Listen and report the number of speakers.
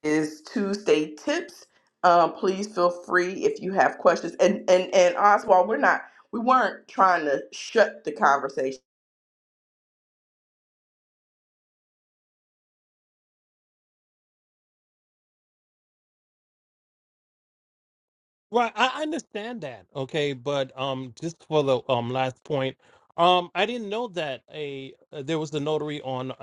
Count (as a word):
two